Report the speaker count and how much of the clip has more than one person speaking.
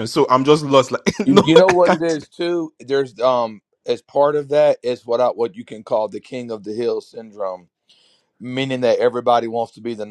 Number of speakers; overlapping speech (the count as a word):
two, about 10%